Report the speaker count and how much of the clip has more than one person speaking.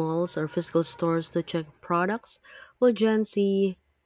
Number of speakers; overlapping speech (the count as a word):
one, no overlap